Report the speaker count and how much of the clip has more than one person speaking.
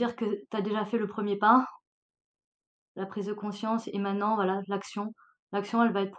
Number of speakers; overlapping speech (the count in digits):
1, no overlap